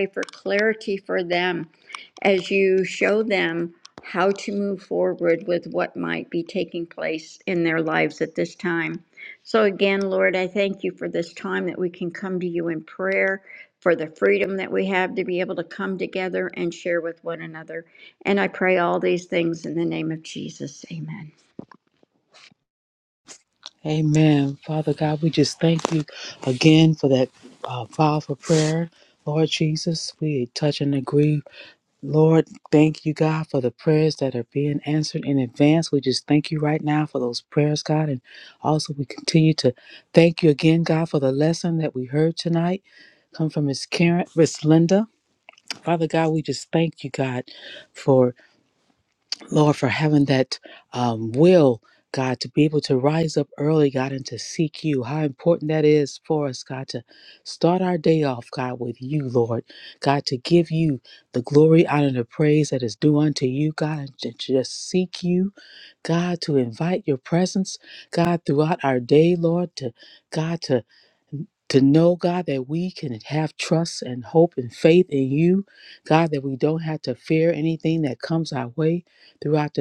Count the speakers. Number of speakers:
two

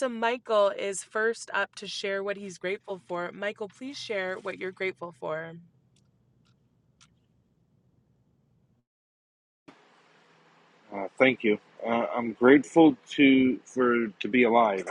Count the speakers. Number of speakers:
two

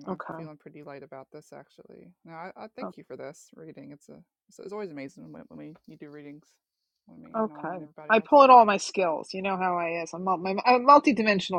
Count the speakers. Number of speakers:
two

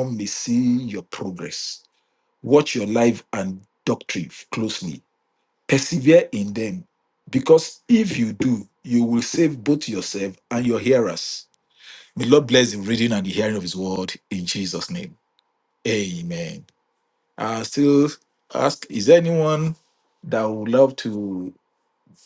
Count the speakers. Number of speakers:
one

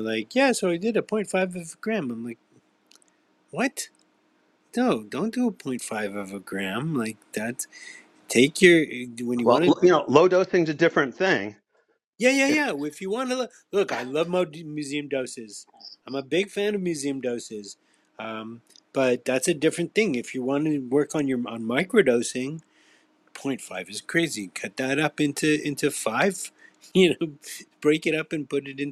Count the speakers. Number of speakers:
two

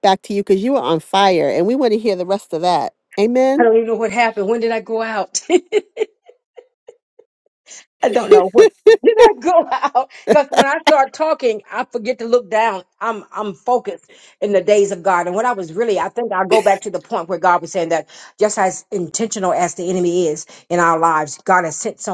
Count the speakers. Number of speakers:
two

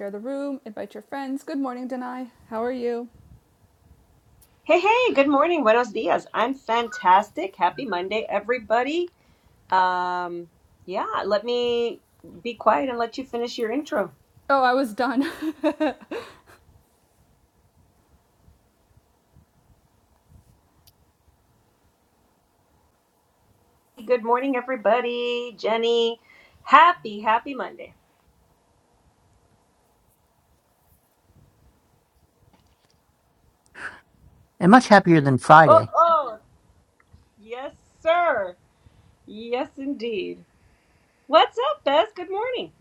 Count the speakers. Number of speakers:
three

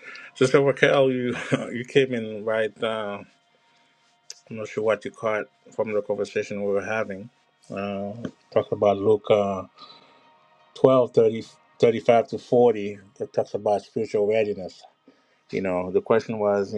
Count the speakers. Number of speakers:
one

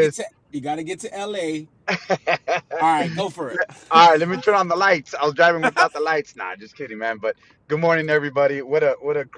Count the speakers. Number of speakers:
two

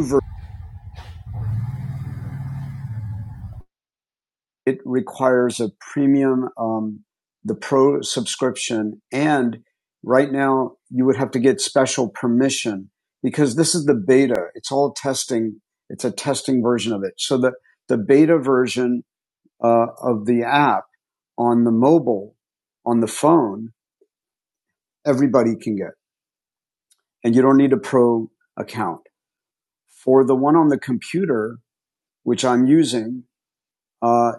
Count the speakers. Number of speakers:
one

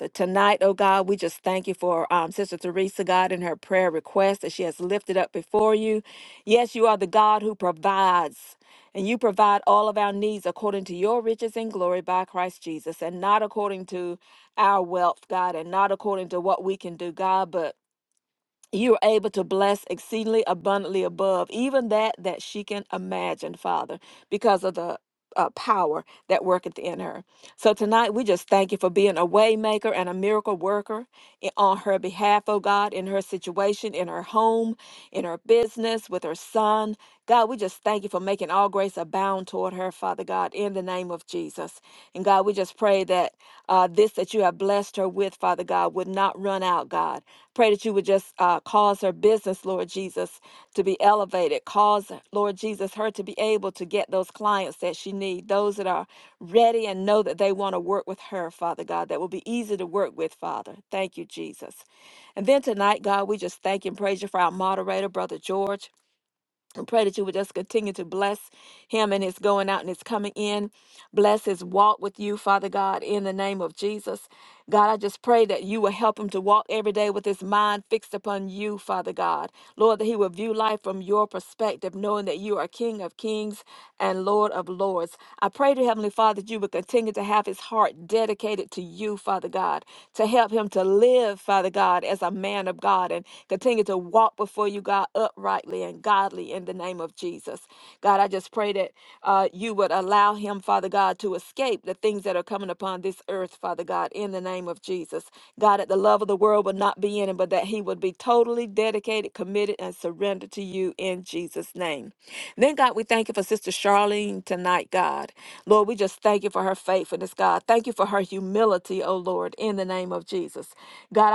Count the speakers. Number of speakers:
one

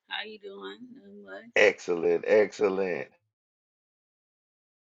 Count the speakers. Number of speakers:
two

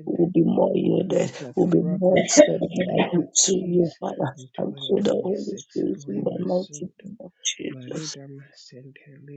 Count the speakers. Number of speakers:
two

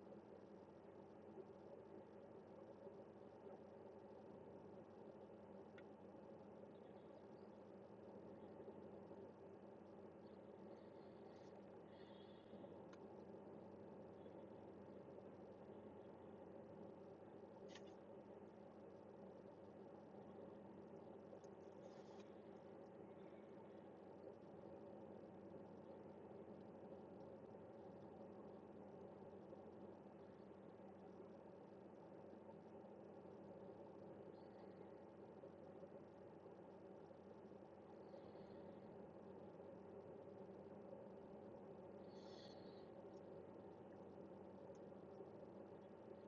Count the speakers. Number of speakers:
zero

